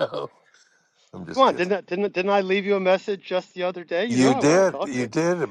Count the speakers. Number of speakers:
two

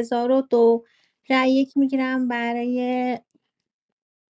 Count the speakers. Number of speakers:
one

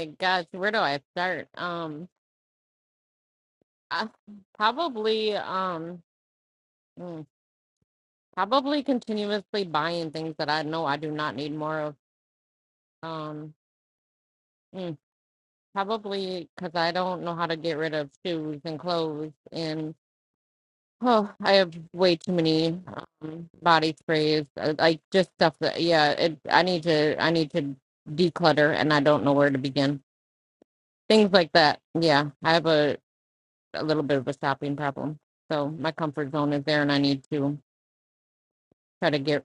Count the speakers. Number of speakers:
one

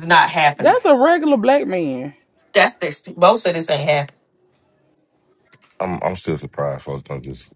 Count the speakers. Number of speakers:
three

